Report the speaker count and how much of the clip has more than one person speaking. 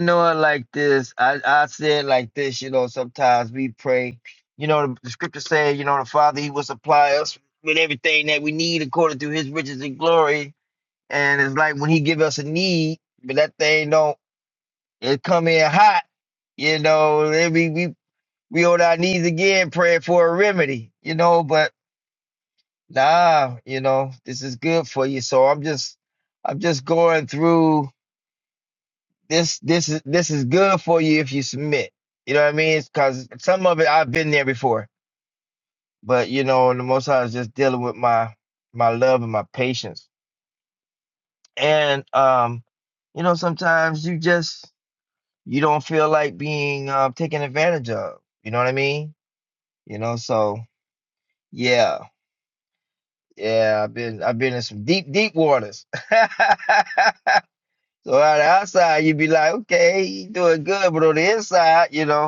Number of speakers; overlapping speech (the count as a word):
one, no overlap